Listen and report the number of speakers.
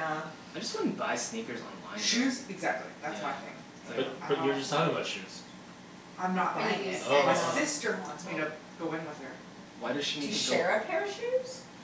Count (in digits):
4